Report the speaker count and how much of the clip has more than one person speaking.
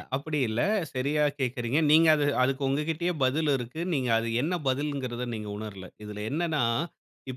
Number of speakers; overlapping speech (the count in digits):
1, no overlap